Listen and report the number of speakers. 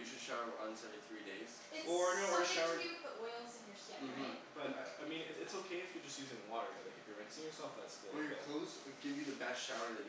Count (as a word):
three